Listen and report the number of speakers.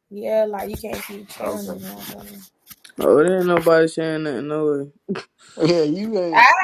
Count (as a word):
three